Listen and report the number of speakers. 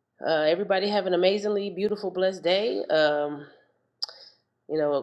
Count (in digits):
1